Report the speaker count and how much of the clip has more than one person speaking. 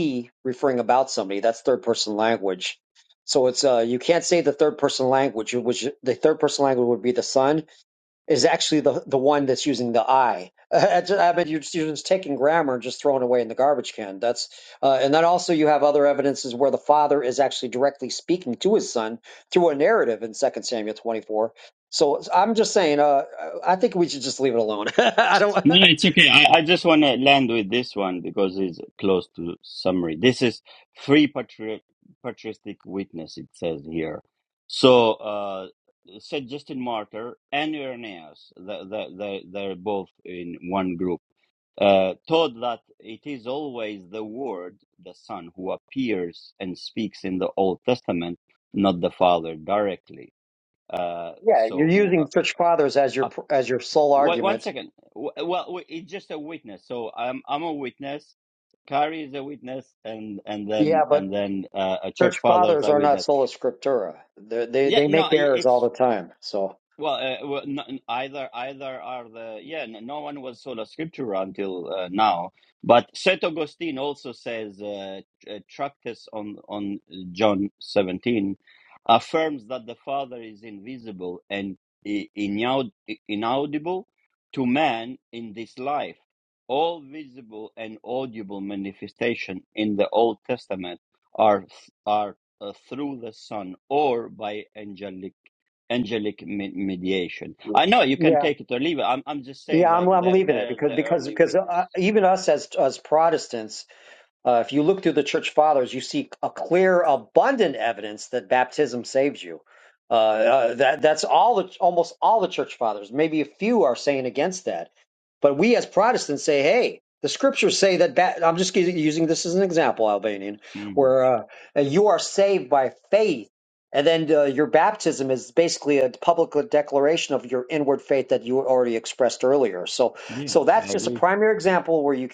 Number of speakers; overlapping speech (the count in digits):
2, about 5%